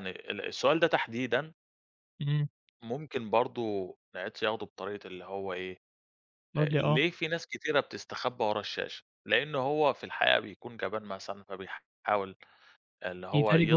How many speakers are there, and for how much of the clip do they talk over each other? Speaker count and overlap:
2, about 5%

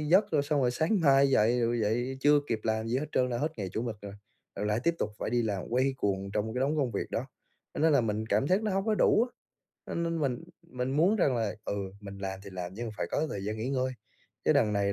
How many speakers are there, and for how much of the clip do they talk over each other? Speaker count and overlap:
1, no overlap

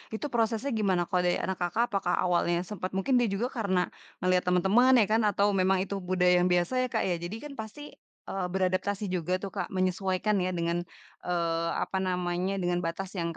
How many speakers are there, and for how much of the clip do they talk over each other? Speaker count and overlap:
1, no overlap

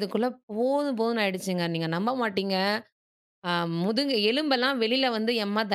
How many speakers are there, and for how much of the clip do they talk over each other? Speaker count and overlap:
1, no overlap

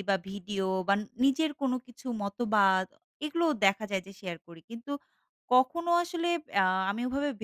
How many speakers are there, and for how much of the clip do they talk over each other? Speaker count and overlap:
1, no overlap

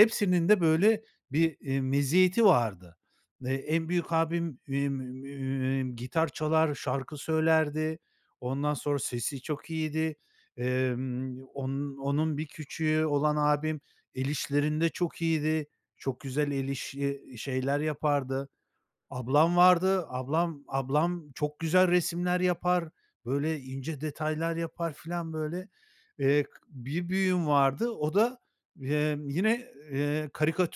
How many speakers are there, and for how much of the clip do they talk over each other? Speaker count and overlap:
1, no overlap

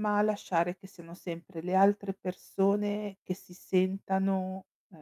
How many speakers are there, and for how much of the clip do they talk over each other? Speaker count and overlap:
1, no overlap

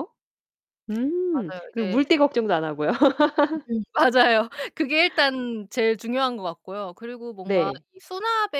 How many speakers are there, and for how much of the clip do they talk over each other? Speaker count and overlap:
2, about 11%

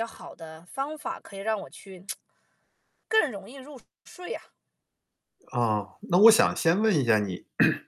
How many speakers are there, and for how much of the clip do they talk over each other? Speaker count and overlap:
2, no overlap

